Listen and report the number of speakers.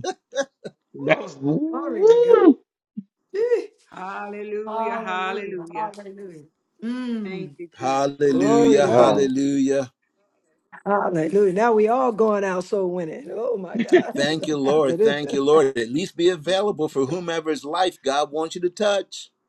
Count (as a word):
four